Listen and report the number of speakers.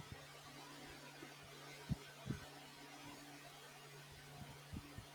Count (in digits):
0